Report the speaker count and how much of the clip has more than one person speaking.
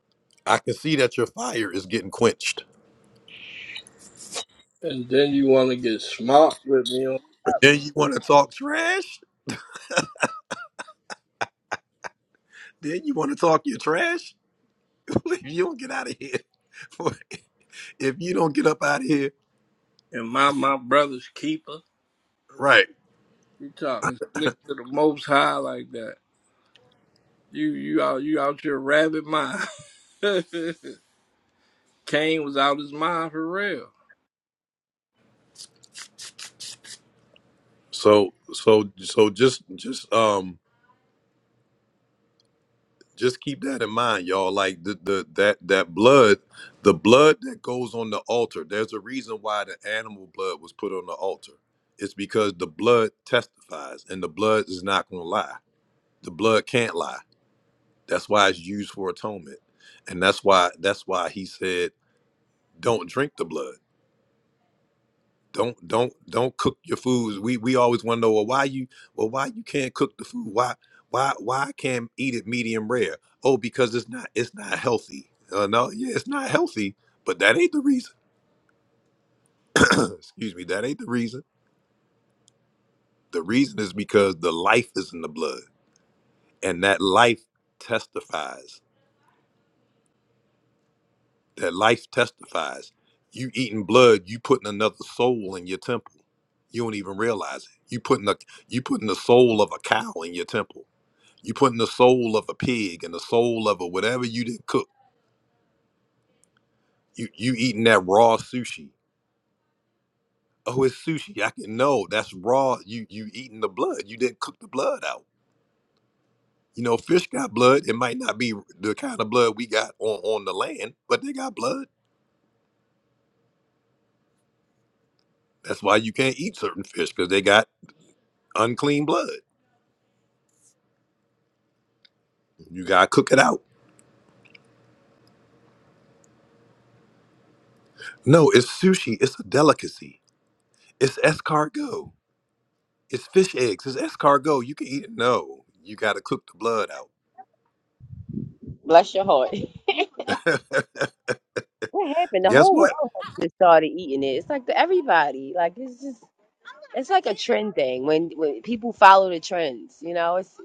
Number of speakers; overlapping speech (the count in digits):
3, under 1%